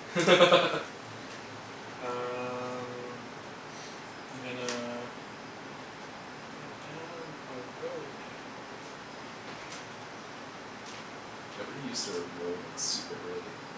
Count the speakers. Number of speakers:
two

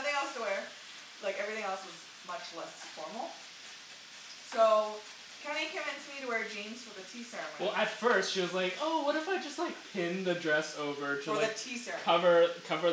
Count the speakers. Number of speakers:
two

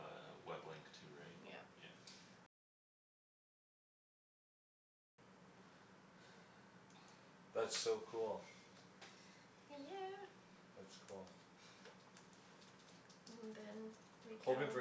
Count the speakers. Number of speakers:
three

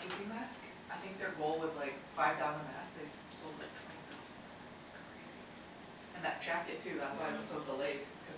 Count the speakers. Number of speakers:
one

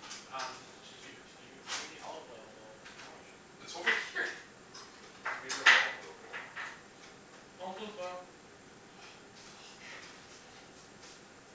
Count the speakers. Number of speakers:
two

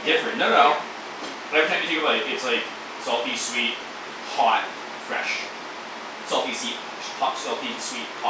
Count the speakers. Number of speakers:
one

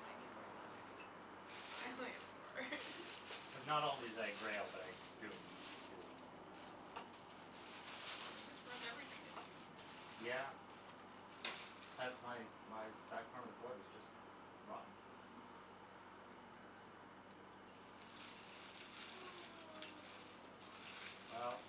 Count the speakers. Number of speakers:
two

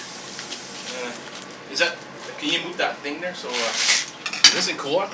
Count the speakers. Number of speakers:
one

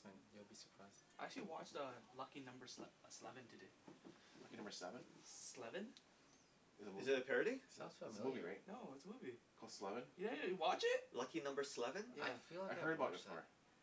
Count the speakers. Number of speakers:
four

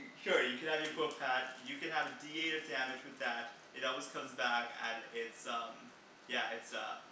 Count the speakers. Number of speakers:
one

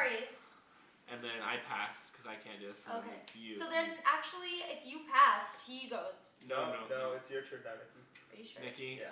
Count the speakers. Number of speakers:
three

